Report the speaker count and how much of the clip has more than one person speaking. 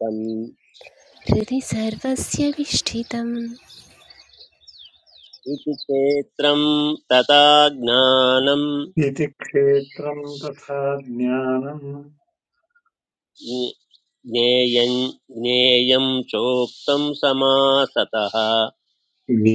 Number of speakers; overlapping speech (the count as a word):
three, no overlap